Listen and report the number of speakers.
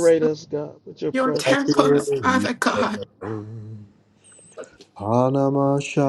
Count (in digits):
3